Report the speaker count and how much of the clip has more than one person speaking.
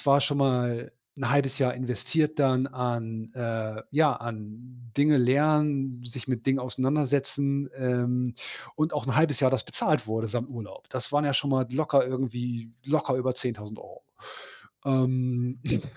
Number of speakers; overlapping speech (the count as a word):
one, no overlap